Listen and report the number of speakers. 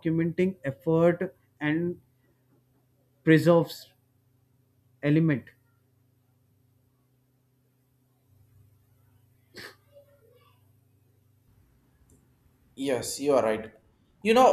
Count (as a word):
two